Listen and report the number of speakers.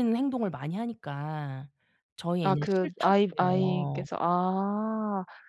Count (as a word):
two